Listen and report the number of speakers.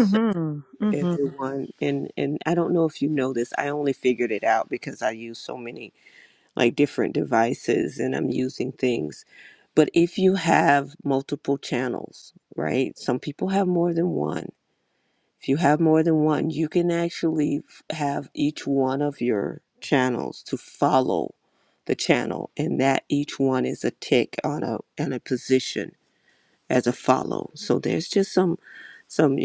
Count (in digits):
2